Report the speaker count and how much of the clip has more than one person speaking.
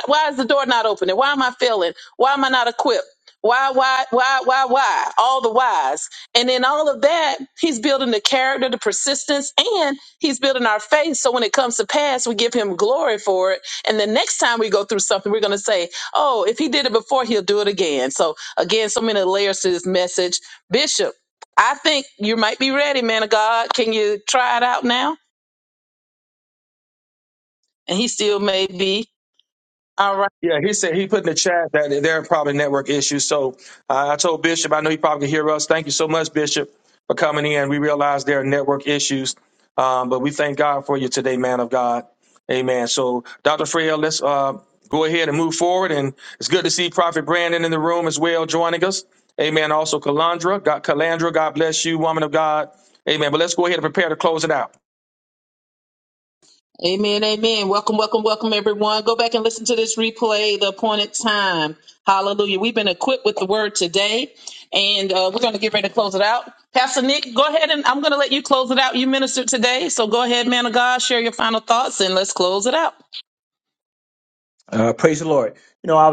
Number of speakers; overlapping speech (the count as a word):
three, no overlap